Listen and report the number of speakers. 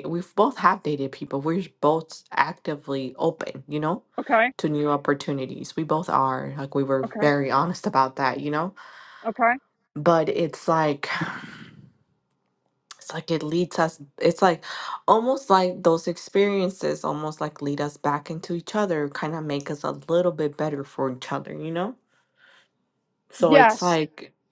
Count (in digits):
2